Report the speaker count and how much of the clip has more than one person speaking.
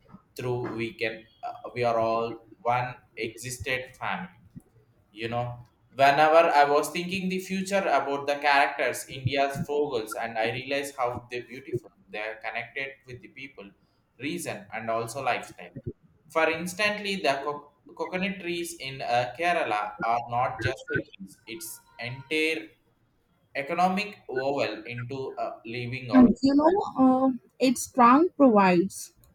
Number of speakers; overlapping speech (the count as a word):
two, about 1%